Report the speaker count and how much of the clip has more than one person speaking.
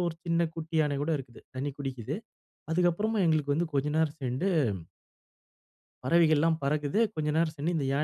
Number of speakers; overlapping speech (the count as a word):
one, no overlap